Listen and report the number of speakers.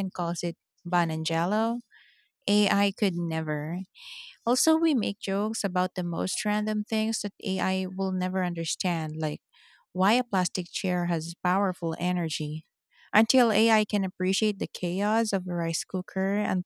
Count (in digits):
1